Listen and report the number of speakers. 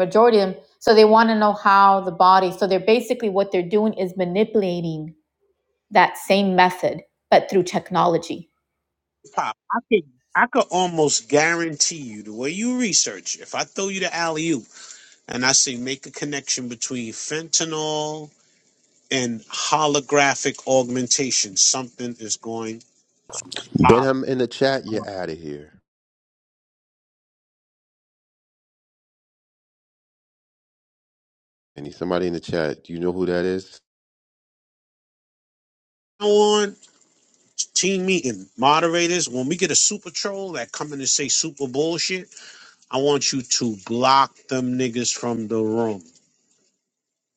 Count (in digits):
3